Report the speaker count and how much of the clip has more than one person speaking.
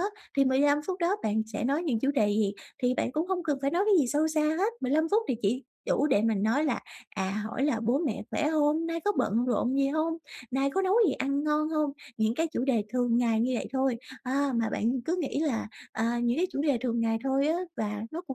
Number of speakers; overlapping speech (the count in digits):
1, no overlap